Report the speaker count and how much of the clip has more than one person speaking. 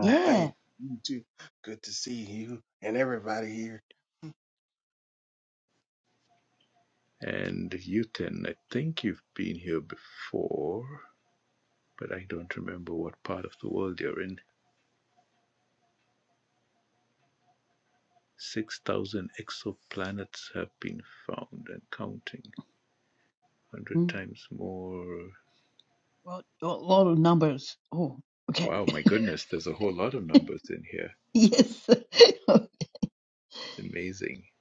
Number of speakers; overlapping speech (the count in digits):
3, about 2%